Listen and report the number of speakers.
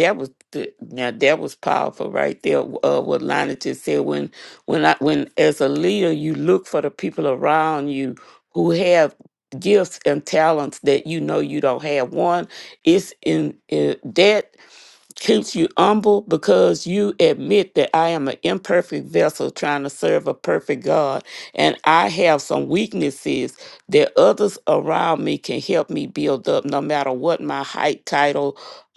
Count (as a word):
one